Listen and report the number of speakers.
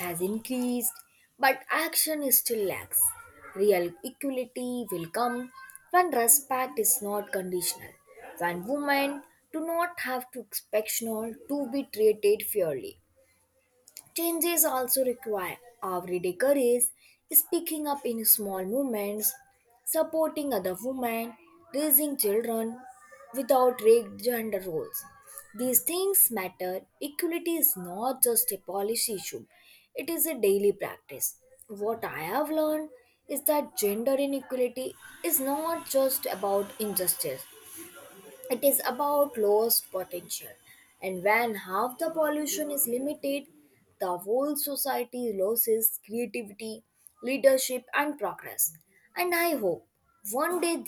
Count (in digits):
1